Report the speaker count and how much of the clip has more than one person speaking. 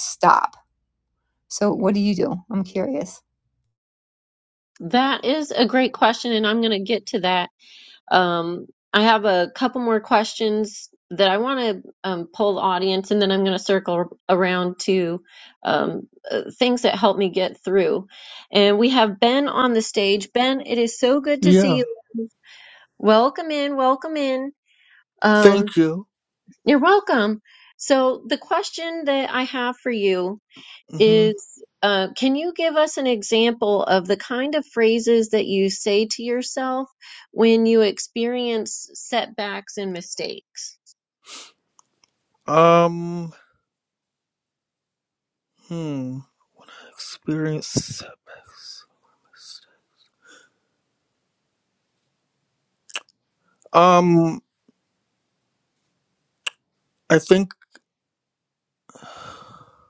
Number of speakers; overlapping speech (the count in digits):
3, about 2%